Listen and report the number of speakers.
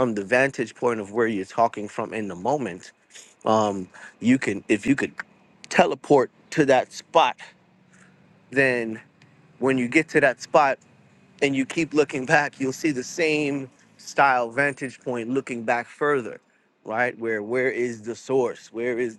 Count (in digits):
1